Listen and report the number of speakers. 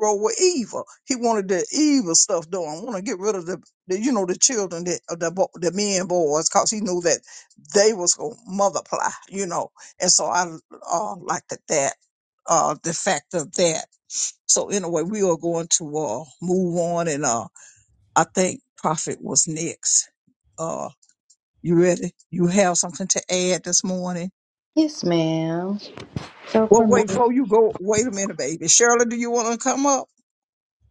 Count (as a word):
two